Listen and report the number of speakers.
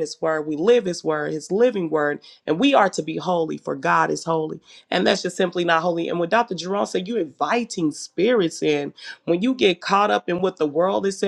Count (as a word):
one